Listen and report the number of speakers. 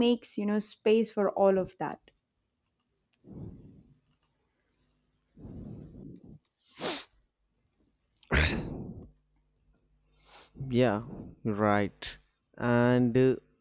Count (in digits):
2